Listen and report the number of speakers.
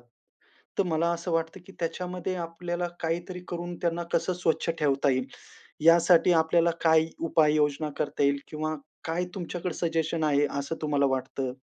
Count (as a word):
one